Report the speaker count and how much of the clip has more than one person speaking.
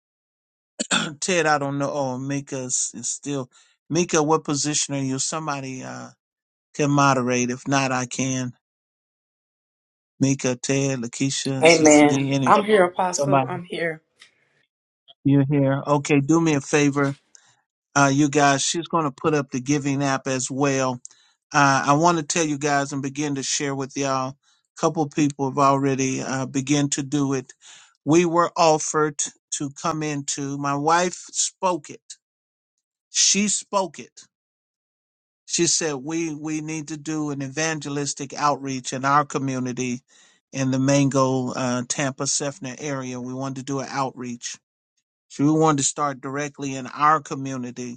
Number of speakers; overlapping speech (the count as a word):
two, about 3%